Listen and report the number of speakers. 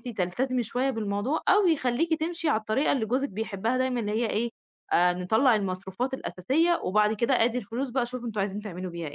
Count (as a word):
one